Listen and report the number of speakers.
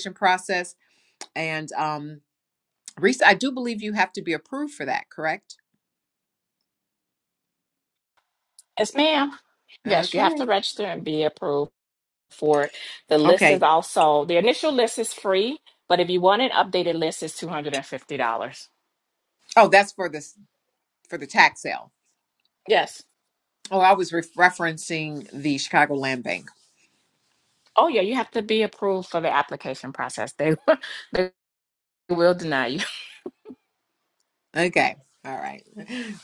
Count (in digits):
2